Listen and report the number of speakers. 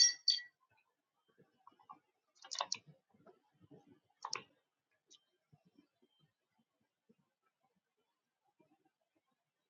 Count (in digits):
0